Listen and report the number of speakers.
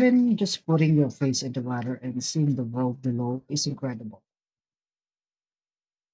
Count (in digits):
1